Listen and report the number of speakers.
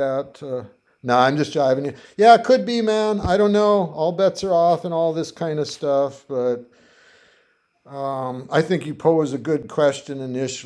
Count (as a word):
one